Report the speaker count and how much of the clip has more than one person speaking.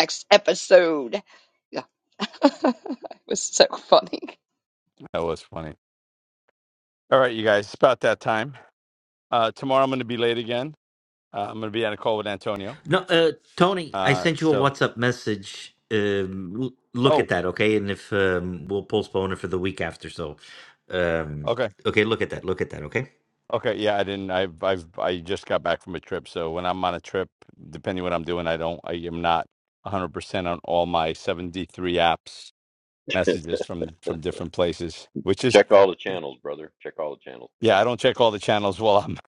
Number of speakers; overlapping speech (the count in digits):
4, about 3%